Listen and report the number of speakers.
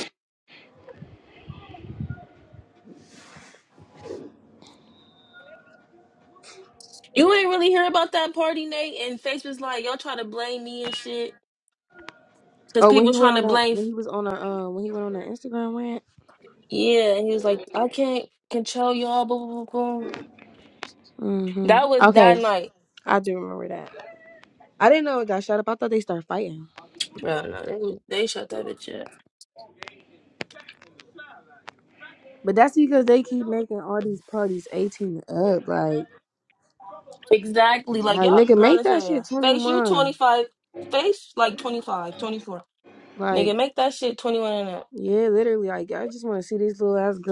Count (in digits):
2